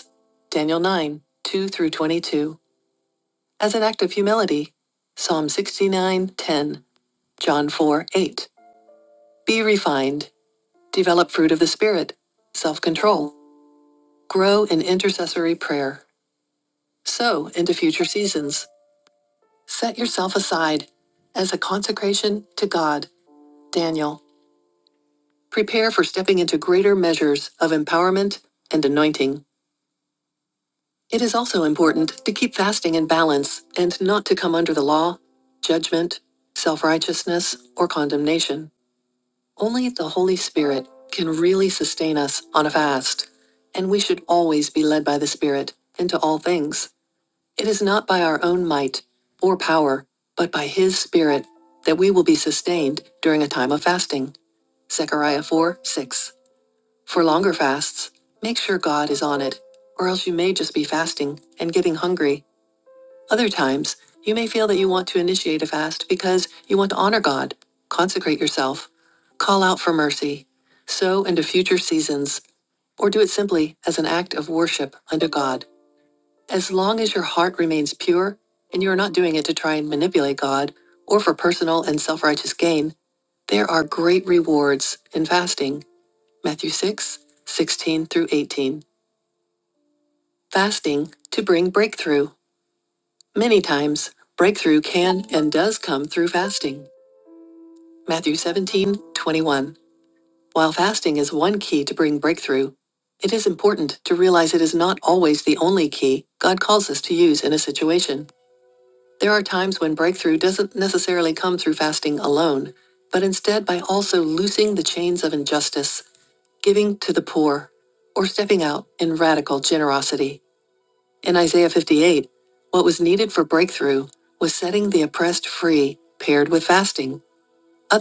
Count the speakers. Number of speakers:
one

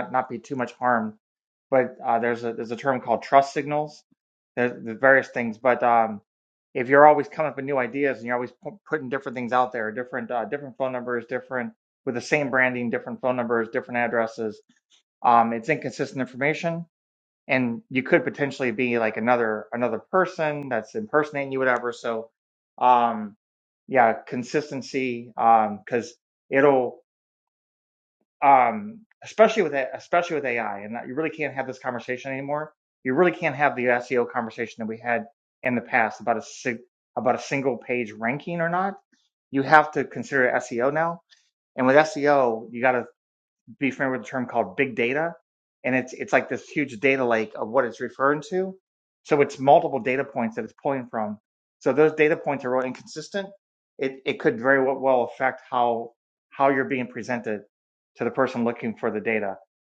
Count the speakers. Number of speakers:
one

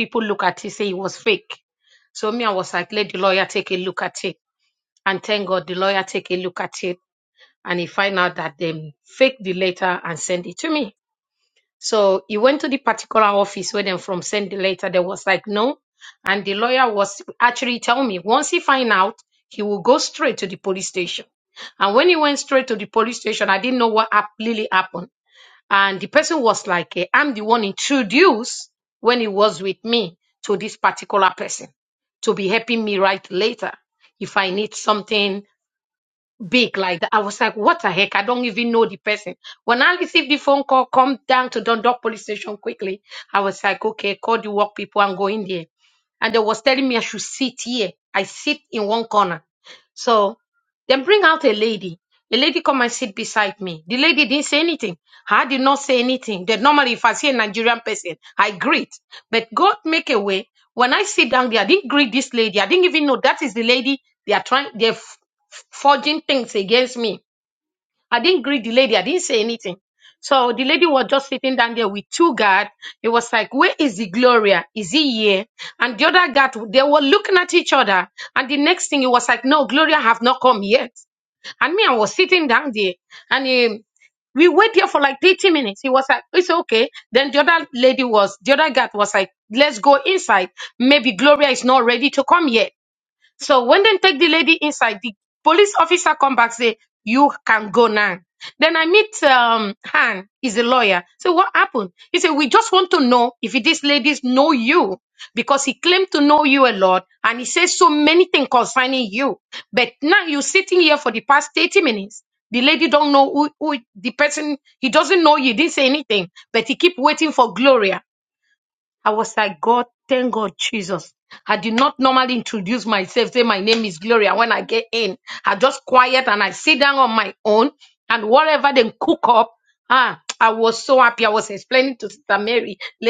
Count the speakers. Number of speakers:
one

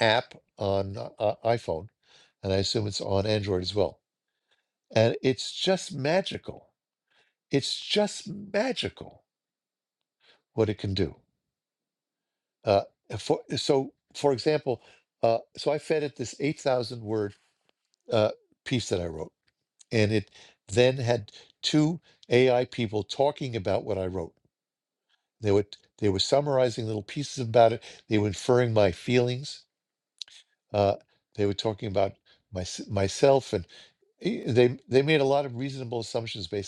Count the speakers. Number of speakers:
one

